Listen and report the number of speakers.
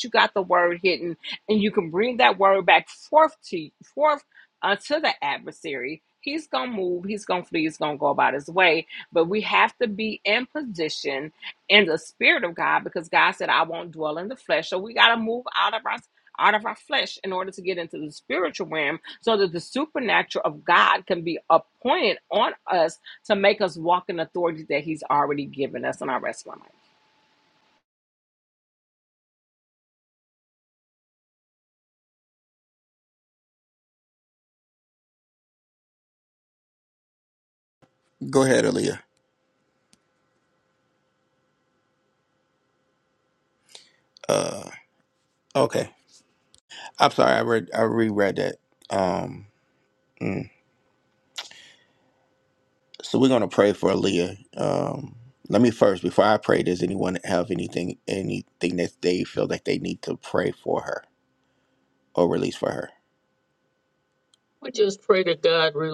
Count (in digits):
3